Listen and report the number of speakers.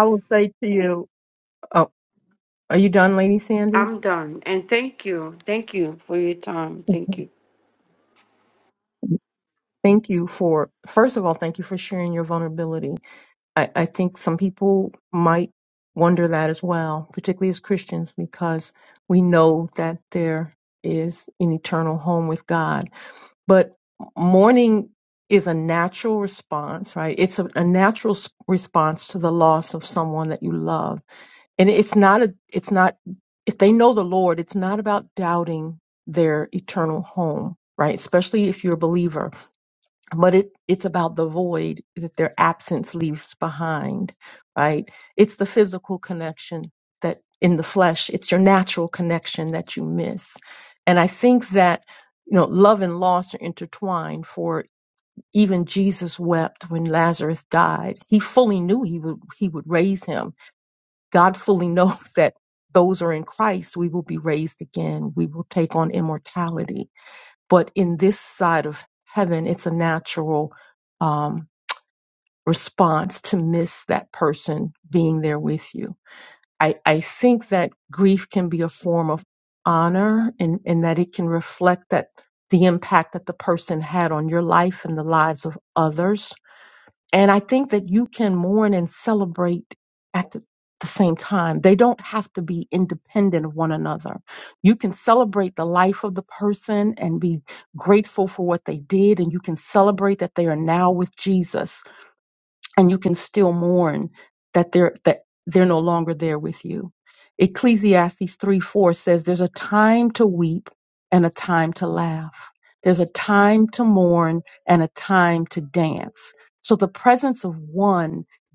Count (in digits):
2